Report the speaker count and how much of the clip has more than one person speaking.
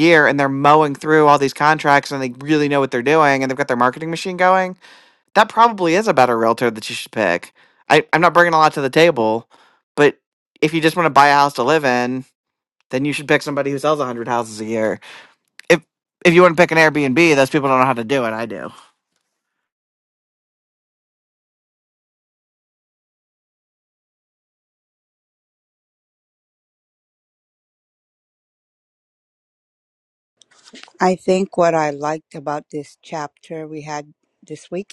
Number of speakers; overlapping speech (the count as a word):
two, no overlap